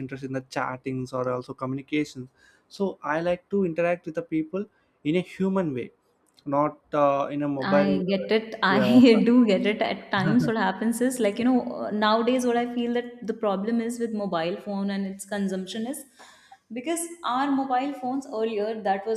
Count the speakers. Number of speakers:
2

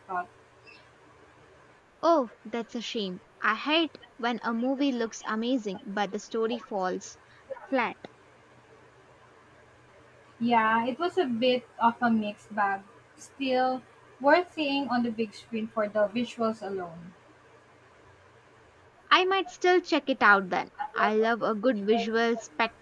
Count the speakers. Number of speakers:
2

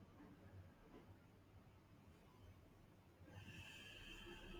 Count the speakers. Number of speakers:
0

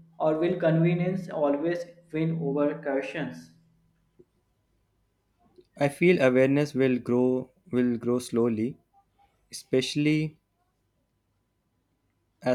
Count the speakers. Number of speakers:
2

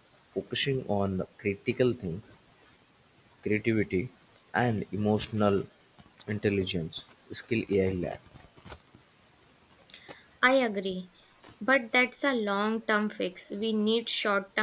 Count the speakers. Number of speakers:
2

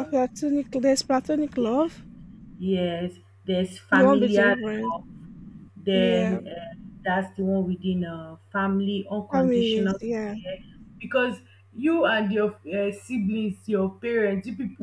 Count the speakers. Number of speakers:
2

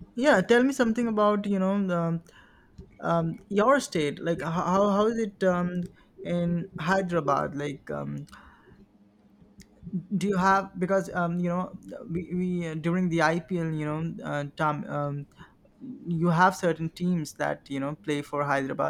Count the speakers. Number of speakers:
1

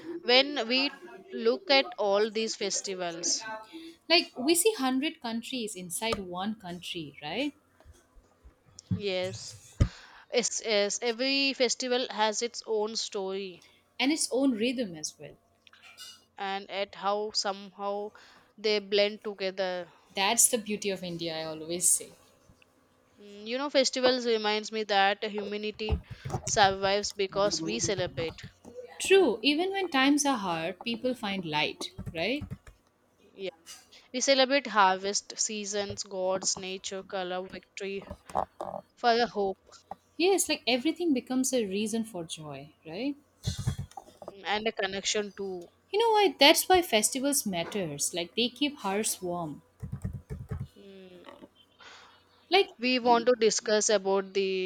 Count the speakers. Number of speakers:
2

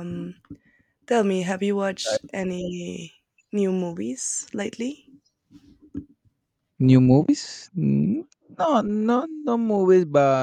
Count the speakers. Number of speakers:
2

